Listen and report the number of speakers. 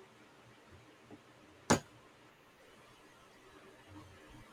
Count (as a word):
zero